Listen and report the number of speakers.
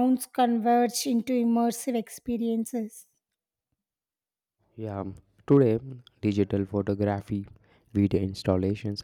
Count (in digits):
2